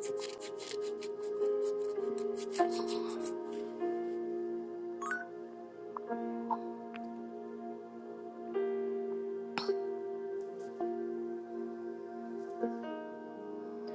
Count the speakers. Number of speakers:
zero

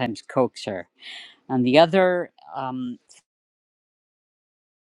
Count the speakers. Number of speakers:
one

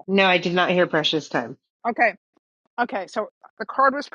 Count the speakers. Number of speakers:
two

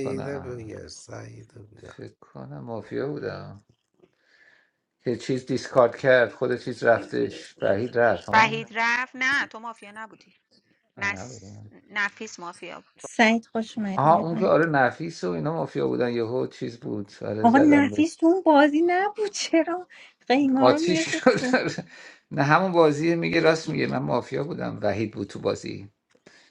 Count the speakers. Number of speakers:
four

